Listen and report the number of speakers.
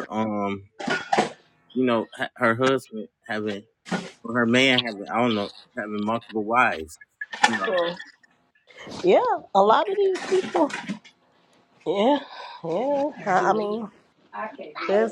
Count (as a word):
three